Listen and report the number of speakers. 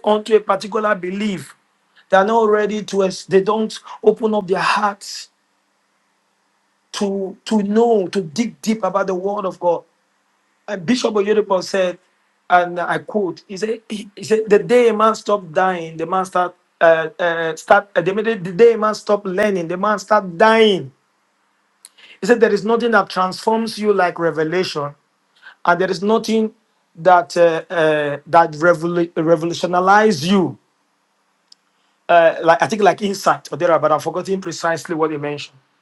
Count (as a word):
one